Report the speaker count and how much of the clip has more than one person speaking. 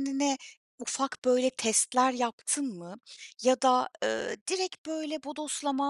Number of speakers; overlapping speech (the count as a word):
one, no overlap